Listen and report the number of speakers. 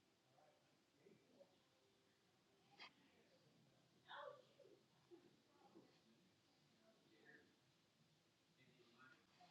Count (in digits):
0